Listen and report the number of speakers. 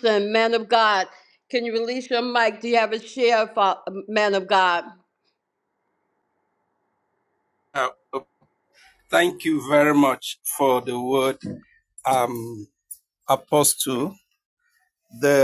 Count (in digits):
2